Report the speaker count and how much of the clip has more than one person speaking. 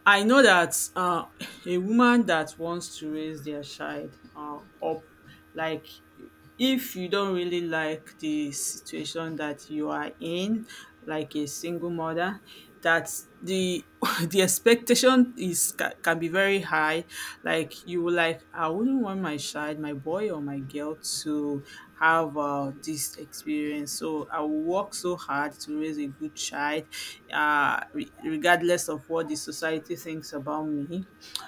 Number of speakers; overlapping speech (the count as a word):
one, no overlap